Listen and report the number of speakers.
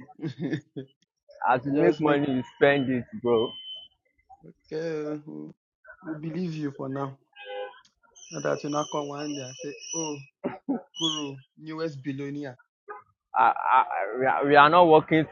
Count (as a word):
two